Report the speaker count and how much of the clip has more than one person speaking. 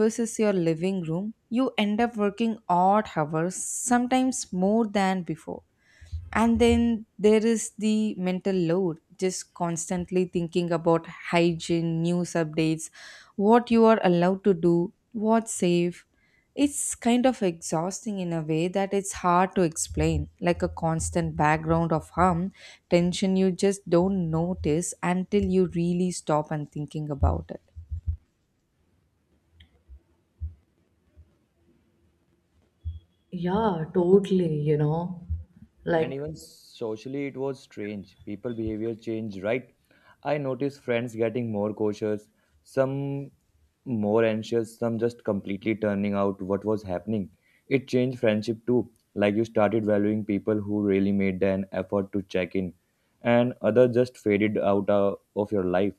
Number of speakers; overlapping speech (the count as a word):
three, under 1%